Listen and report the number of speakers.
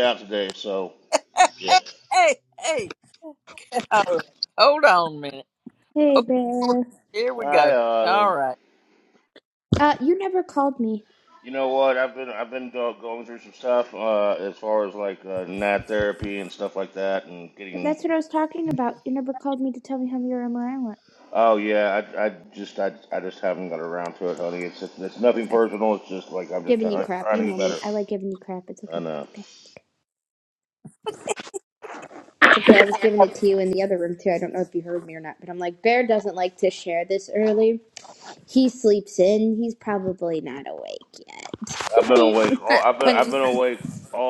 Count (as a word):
three